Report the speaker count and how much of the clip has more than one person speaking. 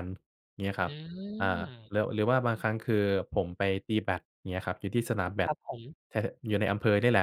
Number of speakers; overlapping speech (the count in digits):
2, about 6%